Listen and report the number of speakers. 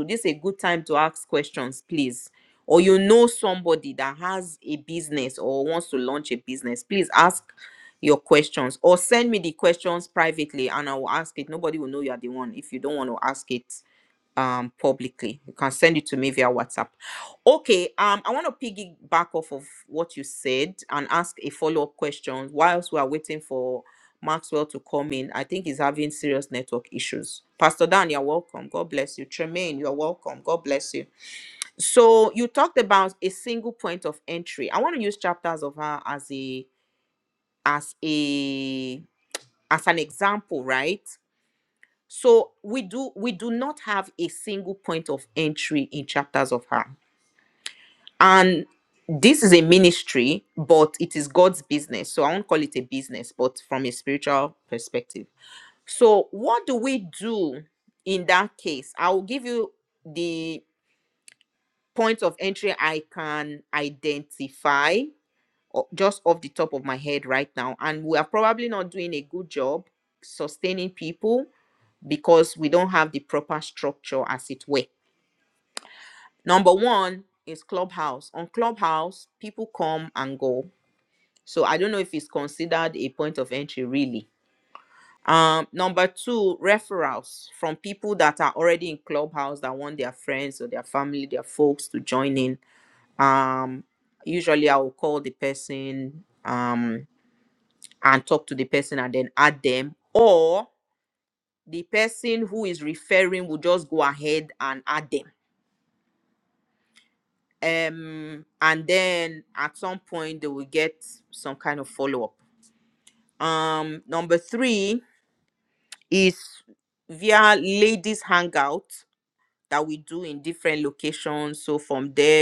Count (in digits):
1